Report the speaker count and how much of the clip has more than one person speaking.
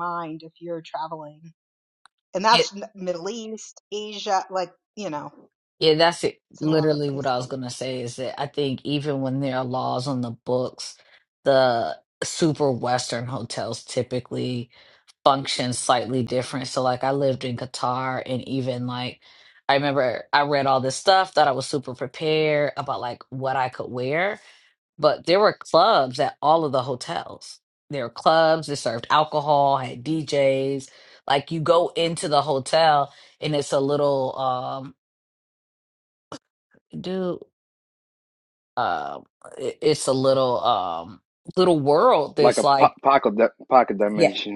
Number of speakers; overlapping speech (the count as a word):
three, about 4%